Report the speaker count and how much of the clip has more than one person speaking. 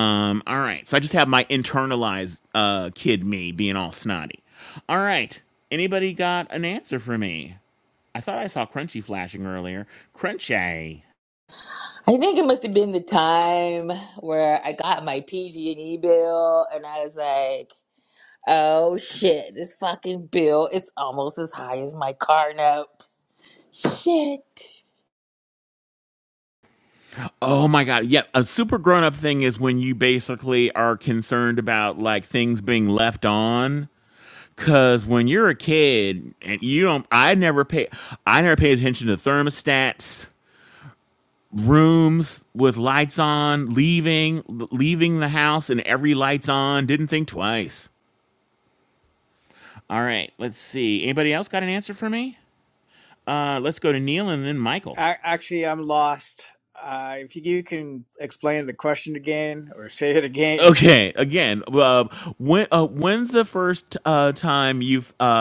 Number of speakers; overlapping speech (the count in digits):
3, under 1%